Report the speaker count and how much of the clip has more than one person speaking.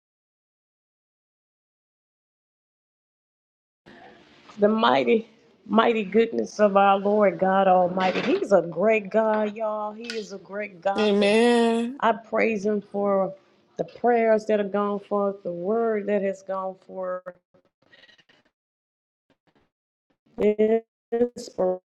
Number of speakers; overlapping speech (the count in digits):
2, about 1%